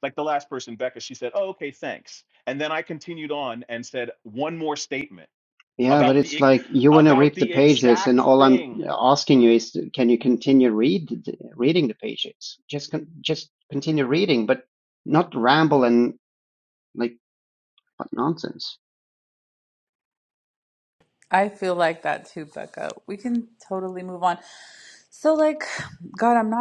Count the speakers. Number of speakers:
3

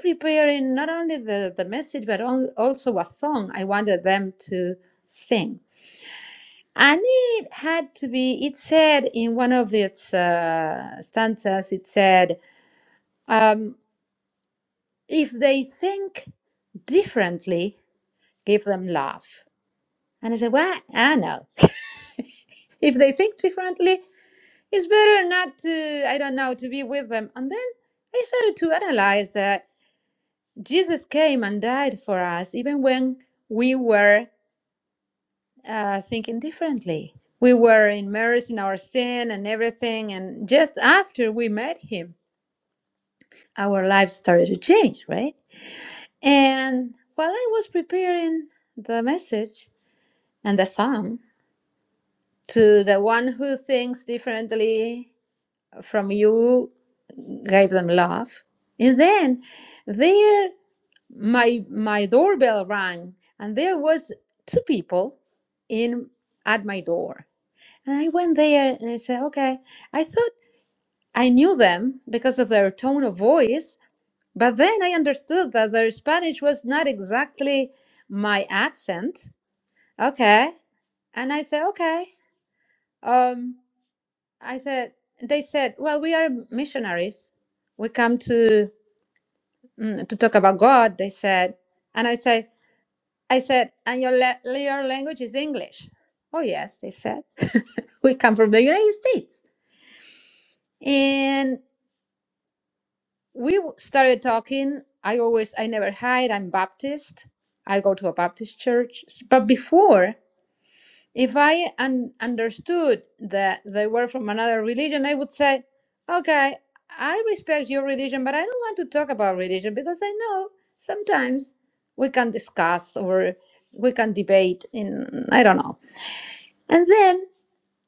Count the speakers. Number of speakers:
1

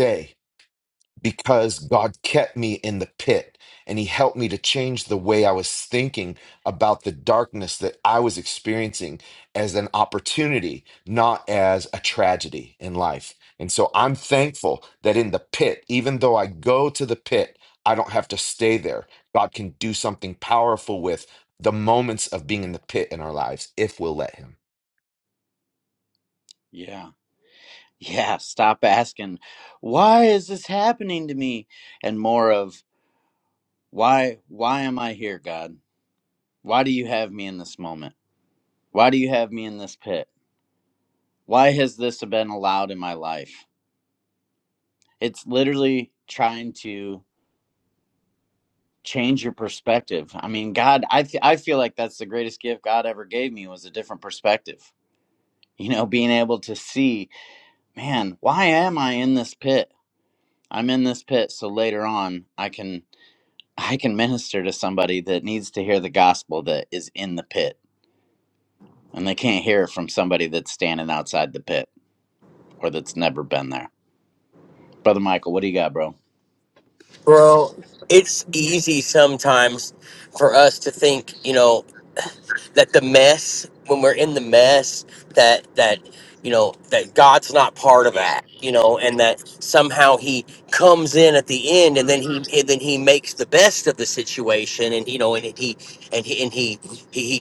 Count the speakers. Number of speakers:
3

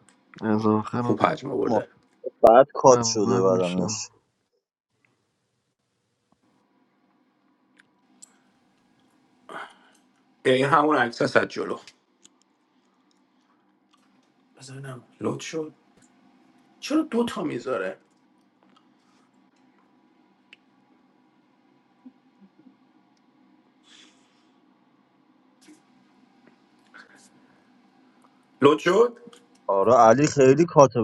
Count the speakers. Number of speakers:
3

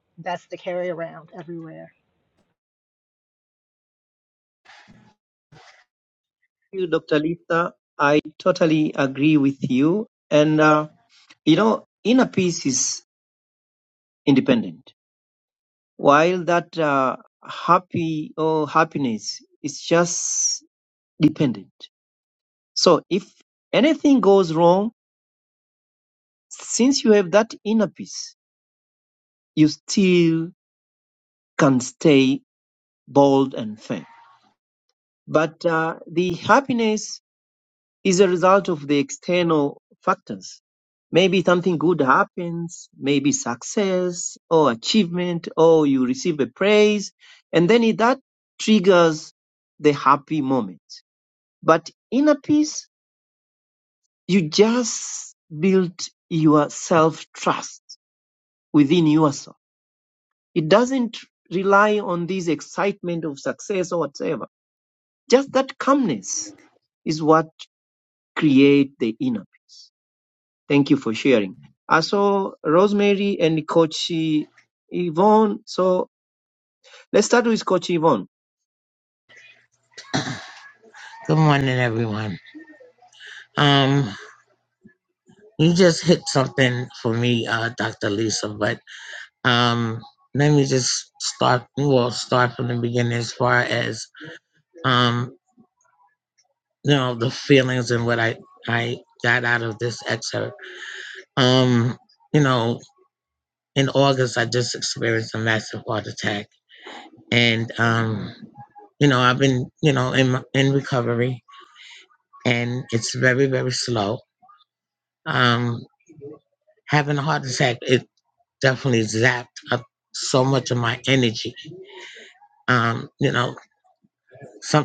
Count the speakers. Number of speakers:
3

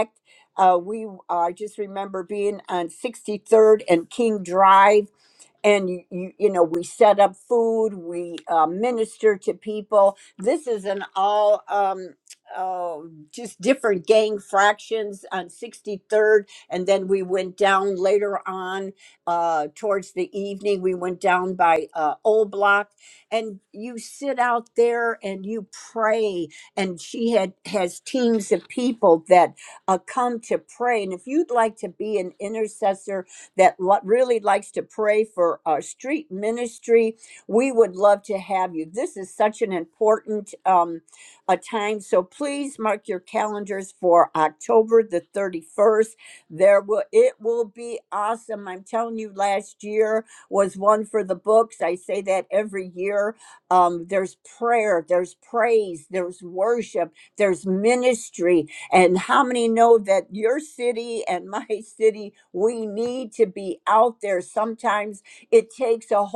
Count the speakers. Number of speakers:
1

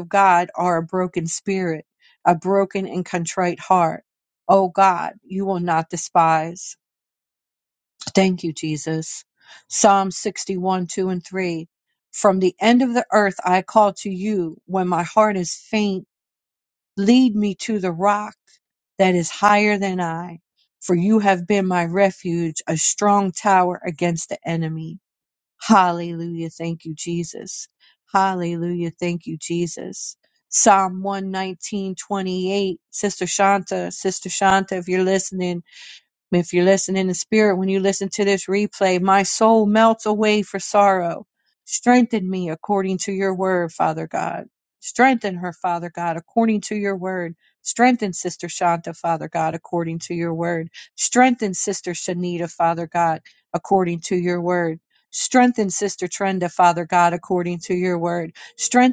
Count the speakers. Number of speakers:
1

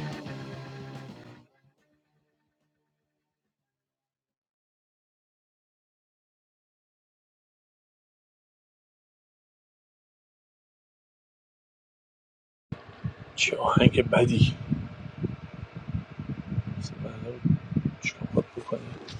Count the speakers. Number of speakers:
1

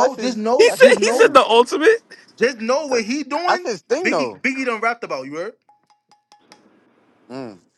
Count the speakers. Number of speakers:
3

